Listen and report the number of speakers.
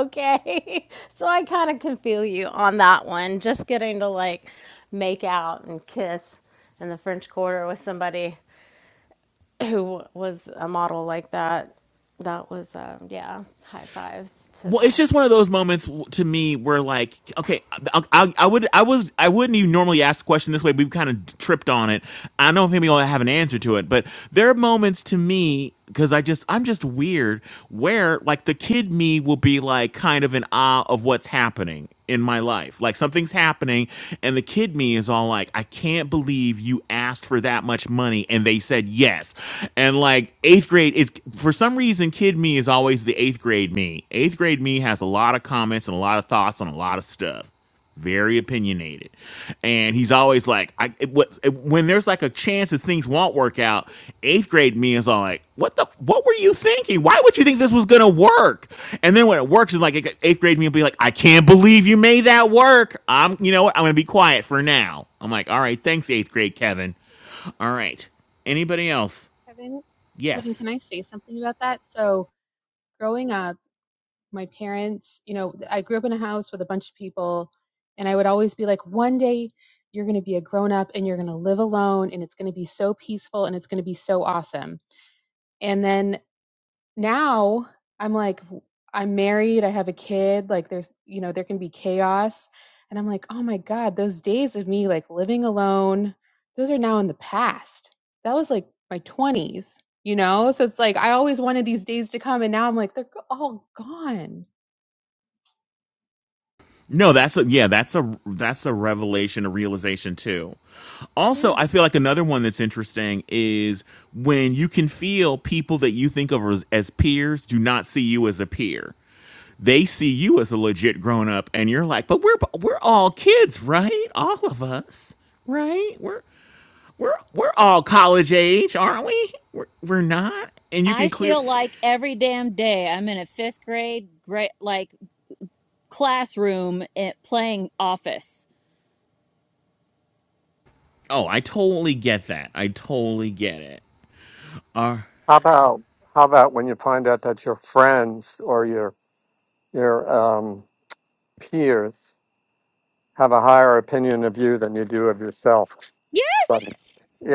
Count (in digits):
5